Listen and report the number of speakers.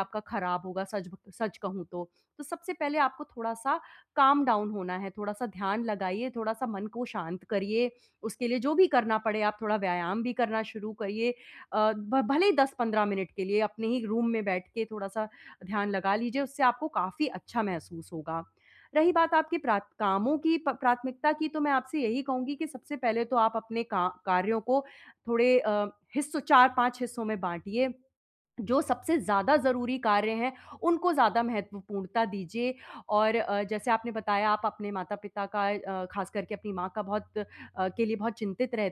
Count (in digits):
1